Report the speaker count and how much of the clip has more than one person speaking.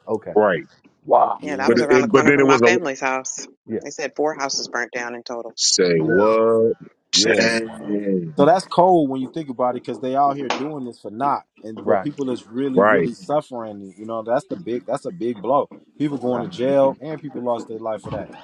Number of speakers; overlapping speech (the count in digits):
4, about 17%